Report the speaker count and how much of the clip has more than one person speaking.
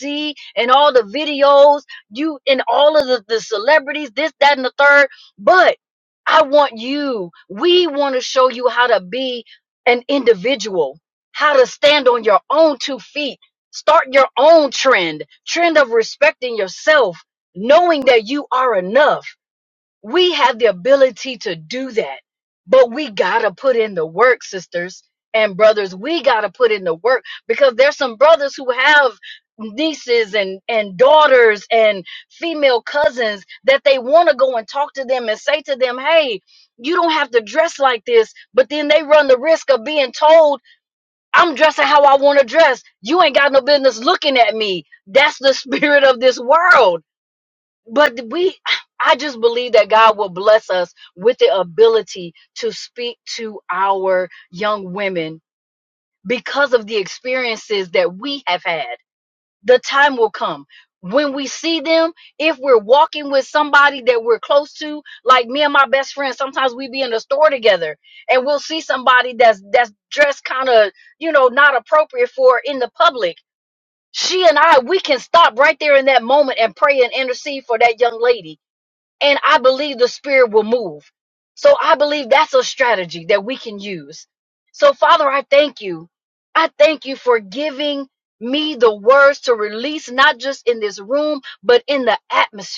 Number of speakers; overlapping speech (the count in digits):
1, no overlap